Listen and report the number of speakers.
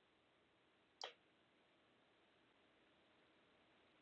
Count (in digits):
0